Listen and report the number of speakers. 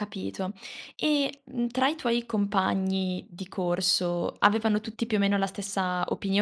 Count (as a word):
one